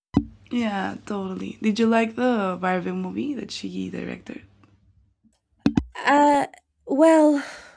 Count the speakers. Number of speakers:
two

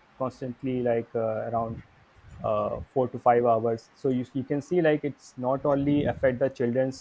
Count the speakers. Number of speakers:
one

